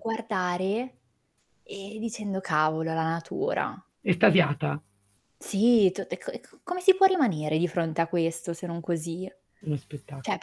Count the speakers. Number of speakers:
two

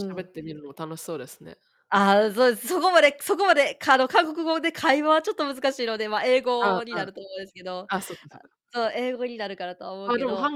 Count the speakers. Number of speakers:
two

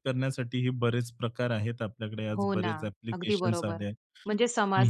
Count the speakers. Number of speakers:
two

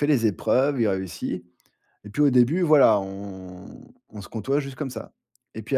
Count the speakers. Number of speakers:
one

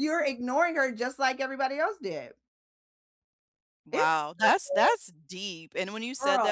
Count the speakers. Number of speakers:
two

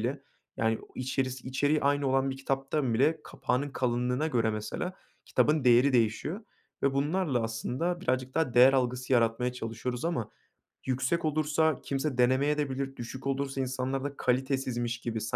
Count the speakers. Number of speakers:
one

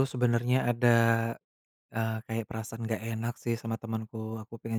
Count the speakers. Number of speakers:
one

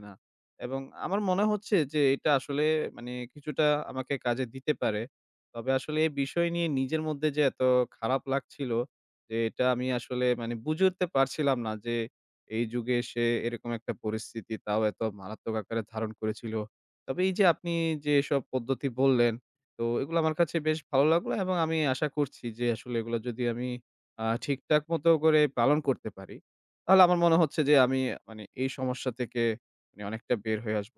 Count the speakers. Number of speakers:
one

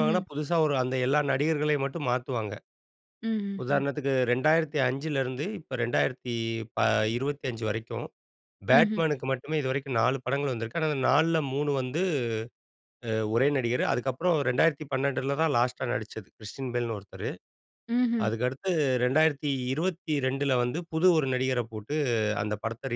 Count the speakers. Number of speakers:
two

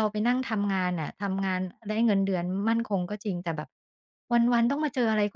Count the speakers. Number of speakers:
one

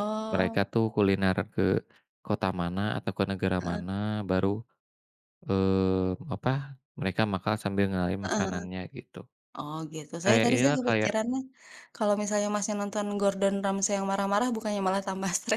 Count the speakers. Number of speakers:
two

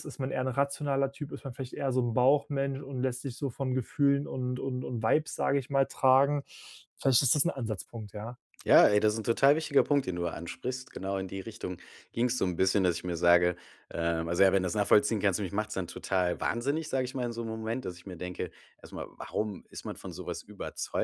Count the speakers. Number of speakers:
two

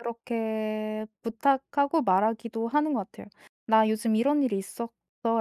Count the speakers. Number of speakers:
one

